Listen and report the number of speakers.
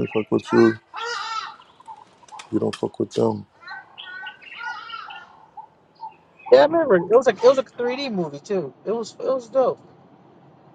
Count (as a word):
two